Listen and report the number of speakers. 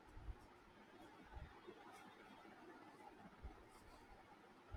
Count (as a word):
zero